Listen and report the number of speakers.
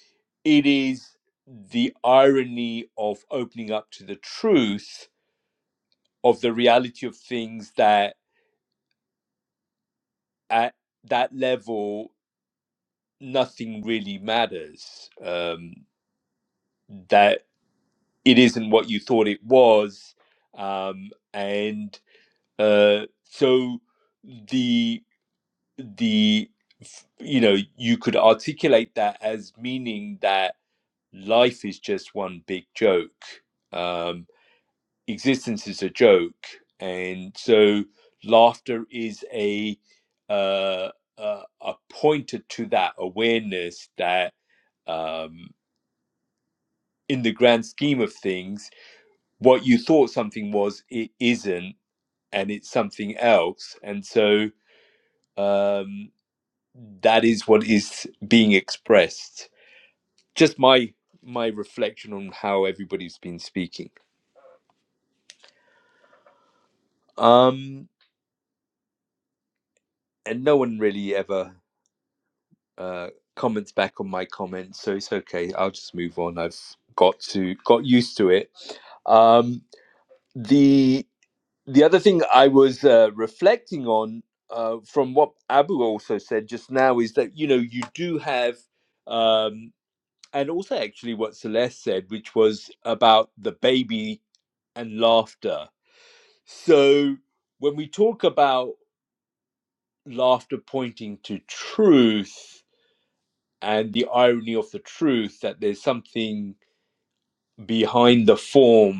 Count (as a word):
one